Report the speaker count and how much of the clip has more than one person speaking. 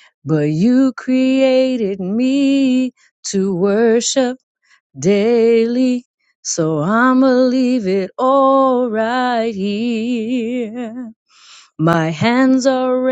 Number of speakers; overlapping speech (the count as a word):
one, no overlap